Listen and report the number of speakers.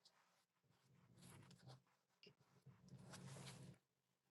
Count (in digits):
0